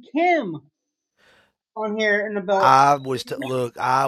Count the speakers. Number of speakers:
two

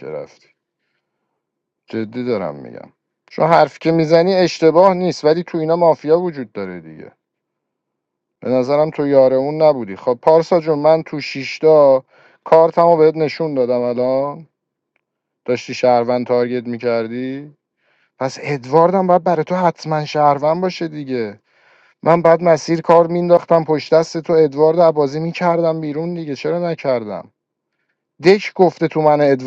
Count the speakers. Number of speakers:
one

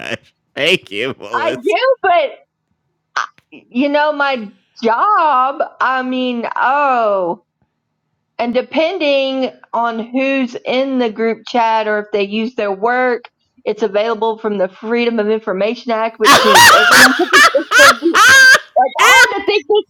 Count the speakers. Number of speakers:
two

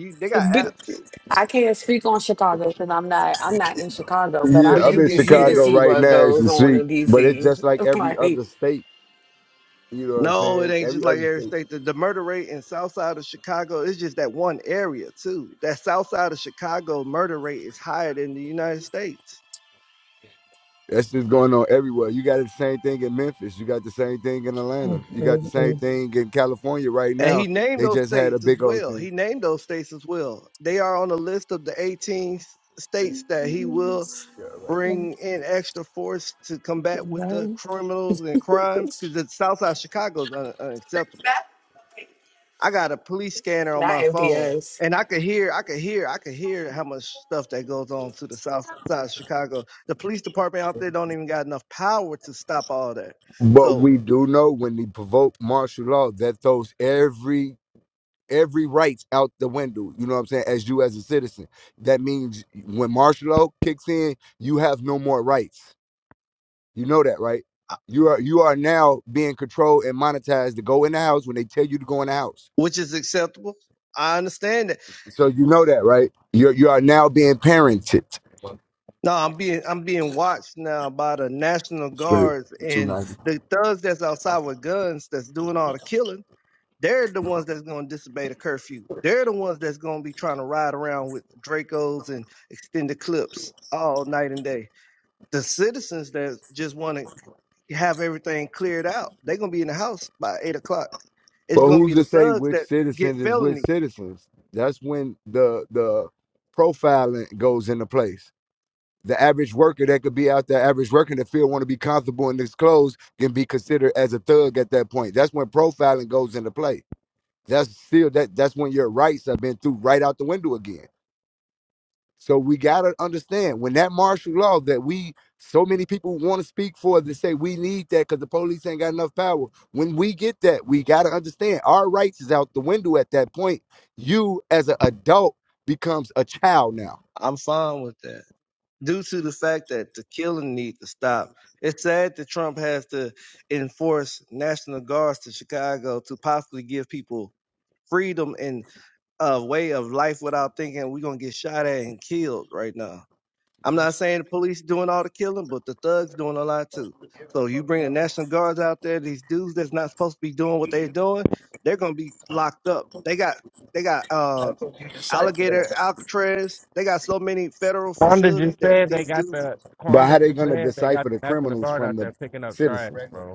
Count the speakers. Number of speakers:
four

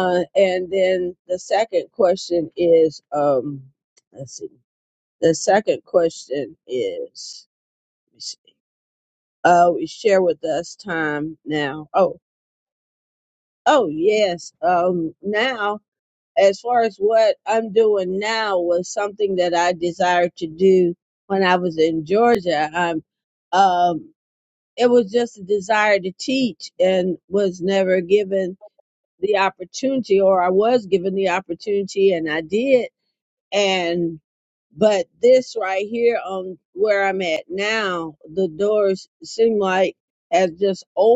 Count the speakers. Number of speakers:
one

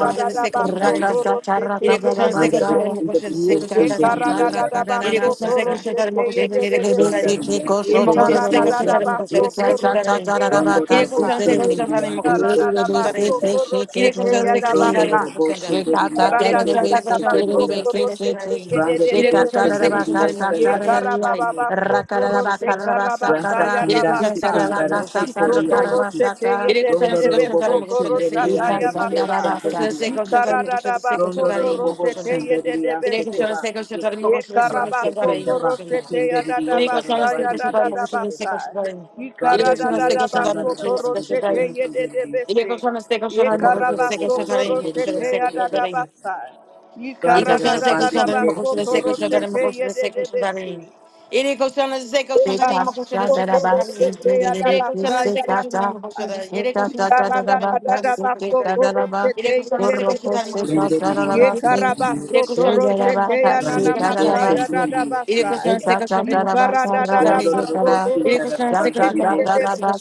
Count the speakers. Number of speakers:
four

